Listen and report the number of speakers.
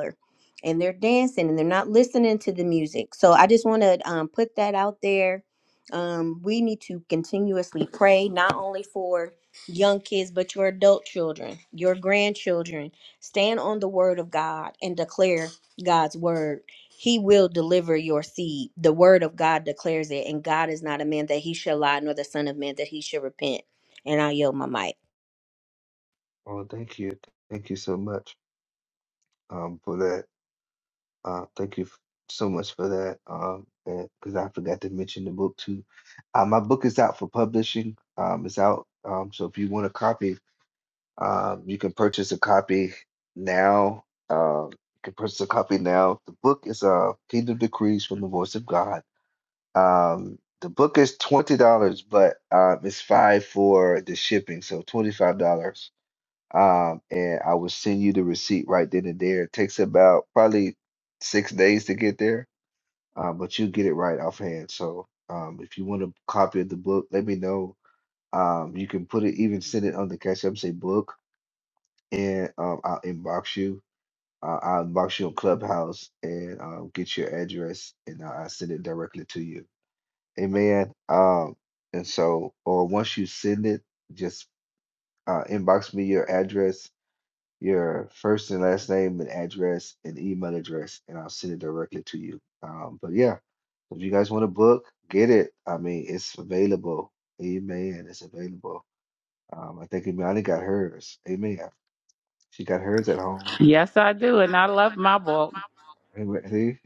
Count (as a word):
three